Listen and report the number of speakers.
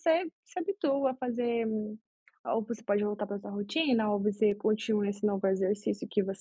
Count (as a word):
one